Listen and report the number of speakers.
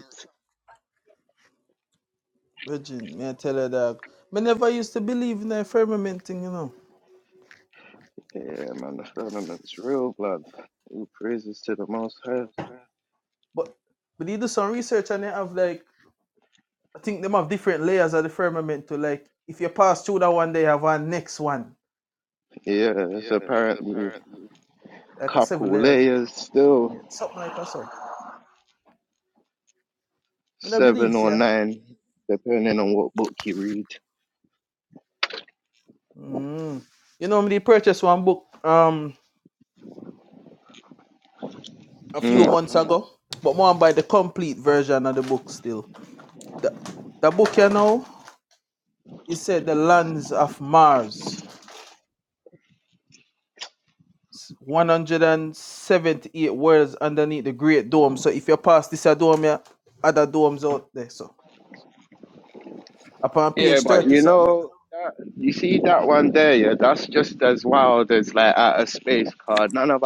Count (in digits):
2